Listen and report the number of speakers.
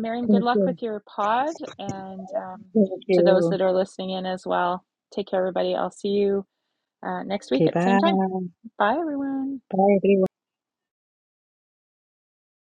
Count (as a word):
two